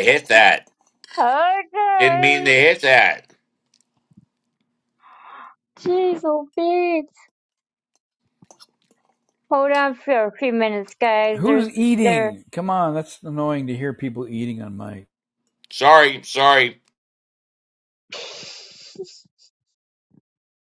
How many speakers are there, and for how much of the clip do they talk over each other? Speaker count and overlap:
3, about 4%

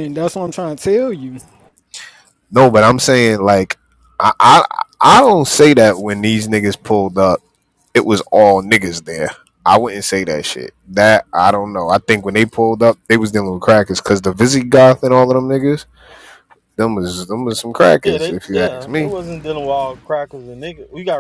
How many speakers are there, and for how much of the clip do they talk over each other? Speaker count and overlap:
3, about 5%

